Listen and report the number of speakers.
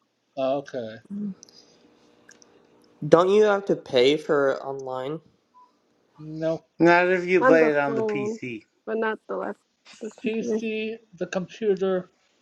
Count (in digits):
4